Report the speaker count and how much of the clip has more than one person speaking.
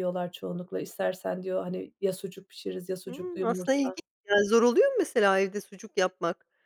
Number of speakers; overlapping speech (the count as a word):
two, about 13%